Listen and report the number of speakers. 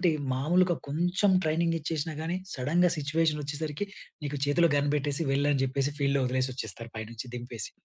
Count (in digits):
1